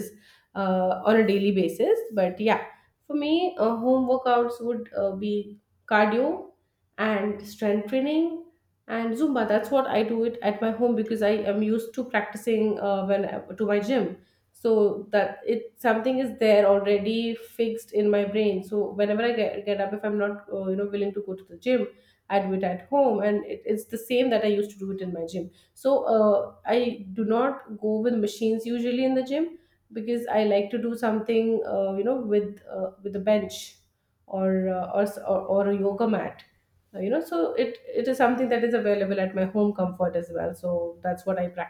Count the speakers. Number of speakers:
1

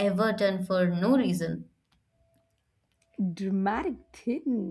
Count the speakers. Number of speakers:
2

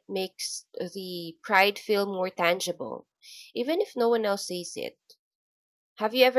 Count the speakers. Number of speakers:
1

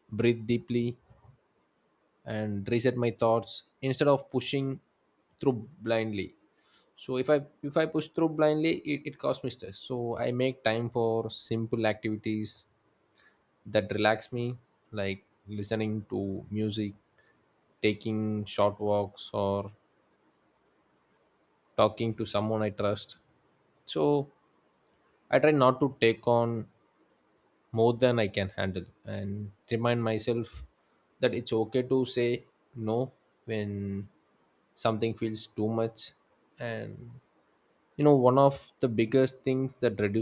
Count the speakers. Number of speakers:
1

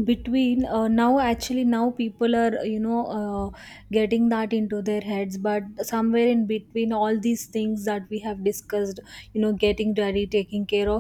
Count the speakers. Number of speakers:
1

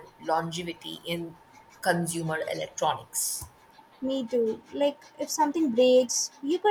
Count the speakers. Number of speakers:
2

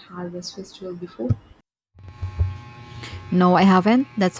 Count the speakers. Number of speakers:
2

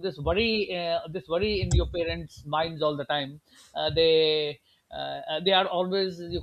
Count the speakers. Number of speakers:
1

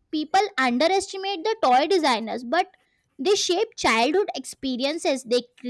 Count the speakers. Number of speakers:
1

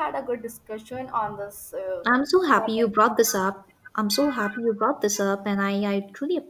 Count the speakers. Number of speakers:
2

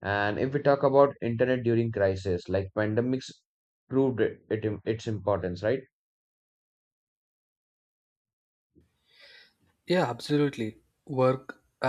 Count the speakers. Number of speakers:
2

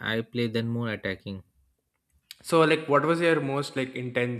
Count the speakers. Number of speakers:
2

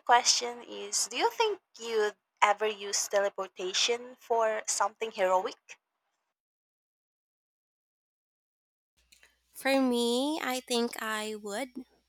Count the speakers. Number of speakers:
2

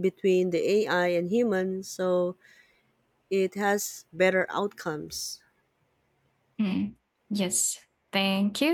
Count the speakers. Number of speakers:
2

